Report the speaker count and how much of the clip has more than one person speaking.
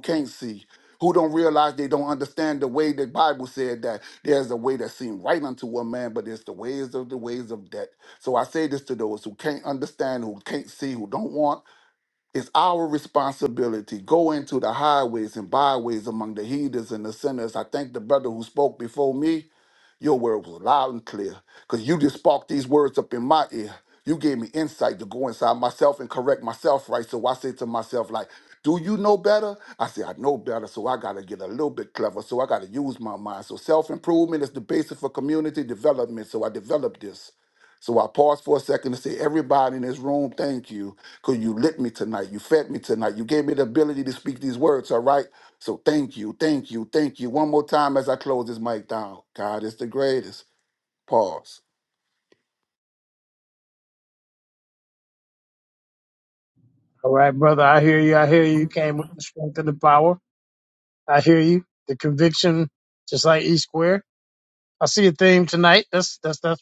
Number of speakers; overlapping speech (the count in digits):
2, no overlap